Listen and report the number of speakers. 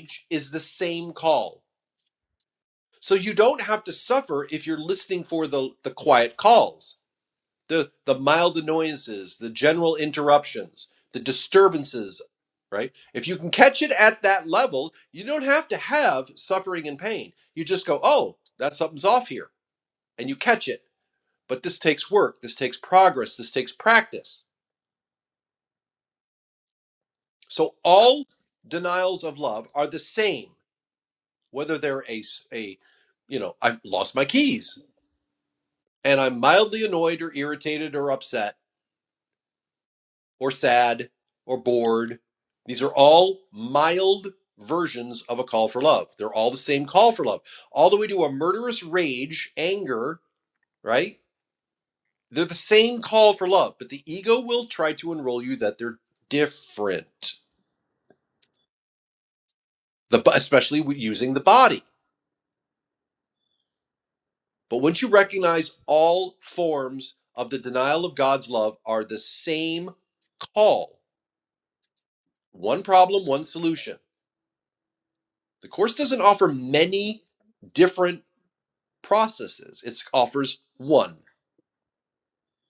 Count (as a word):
one